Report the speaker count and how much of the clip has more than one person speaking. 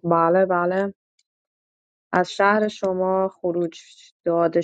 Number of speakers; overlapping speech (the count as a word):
one, no overlap